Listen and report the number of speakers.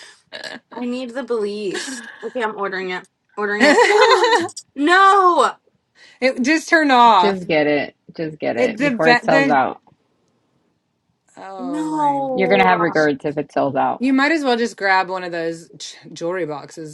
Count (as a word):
three